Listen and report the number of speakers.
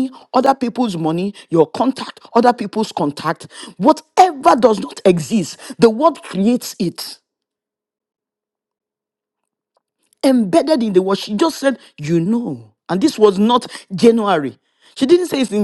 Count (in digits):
1